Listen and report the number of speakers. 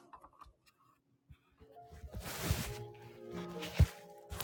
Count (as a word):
zero